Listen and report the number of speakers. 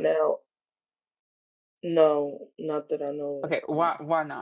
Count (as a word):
two